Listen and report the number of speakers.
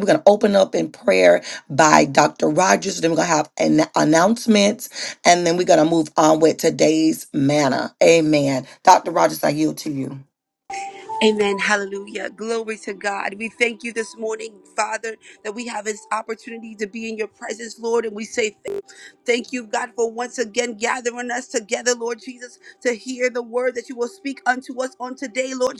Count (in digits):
2